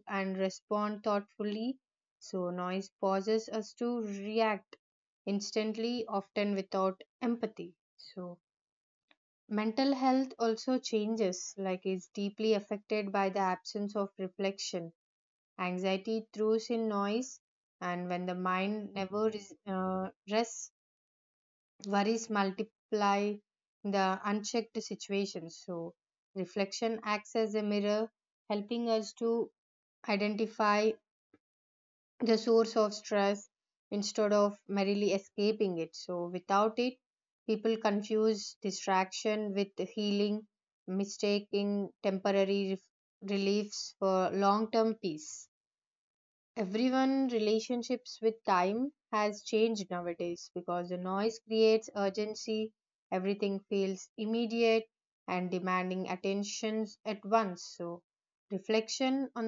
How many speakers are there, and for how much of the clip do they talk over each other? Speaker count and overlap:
1, no overlap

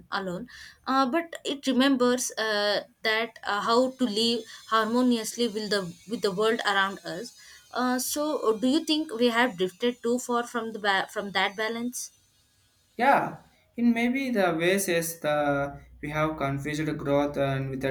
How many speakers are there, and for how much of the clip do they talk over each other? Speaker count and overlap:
2, no overlap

